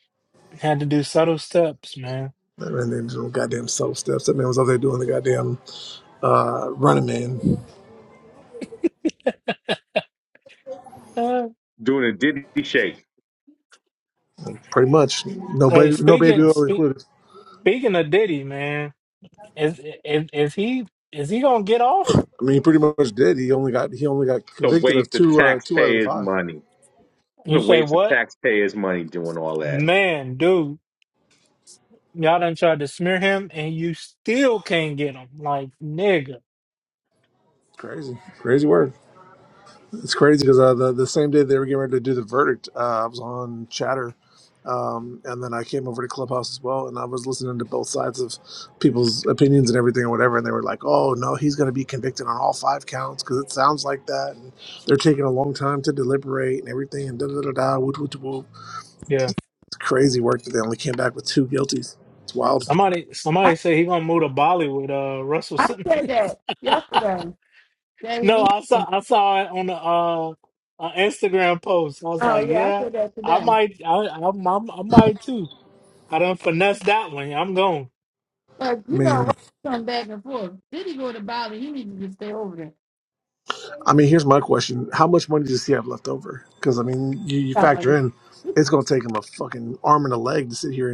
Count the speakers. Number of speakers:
4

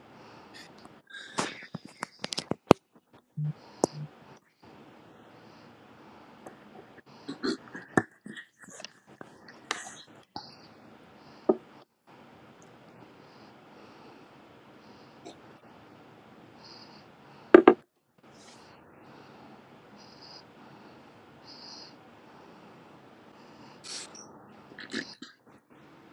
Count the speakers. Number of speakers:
0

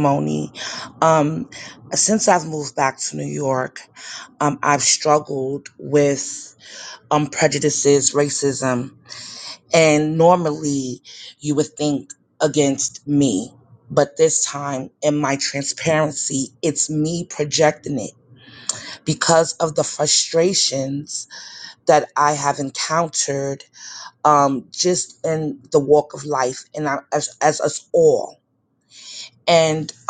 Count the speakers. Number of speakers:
1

